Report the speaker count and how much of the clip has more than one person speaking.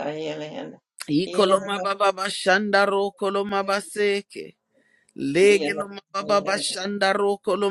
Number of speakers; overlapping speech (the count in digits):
2, about 17%